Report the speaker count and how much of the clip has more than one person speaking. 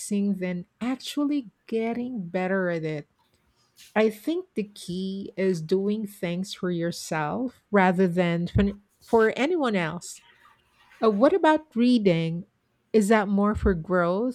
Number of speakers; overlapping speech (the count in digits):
1, no overlap